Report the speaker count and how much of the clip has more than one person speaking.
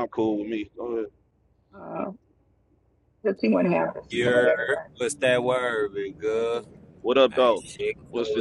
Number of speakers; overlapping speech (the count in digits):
3, about 17%